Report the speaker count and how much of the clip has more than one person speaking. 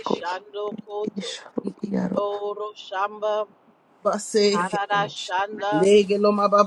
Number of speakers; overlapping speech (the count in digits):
3, about 26%